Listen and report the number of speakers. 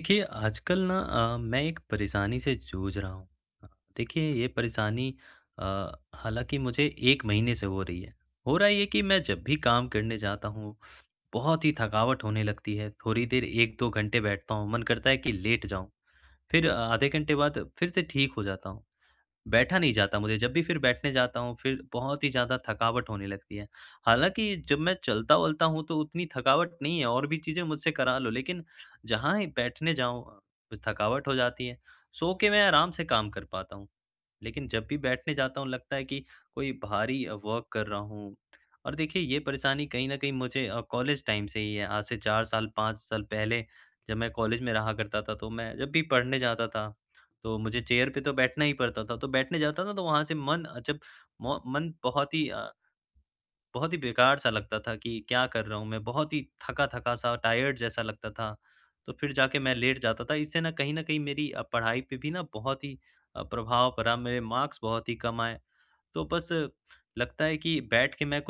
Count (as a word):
one